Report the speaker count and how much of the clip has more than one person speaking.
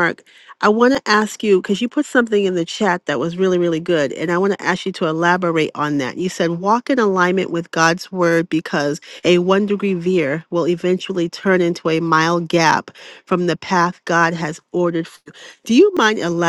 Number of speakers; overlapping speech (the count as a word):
one, no overlap